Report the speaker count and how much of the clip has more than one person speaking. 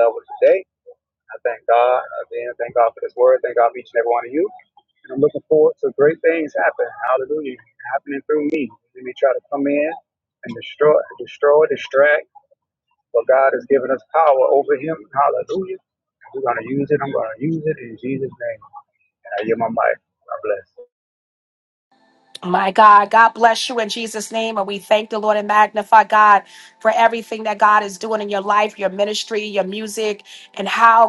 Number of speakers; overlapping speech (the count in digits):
2, no overlap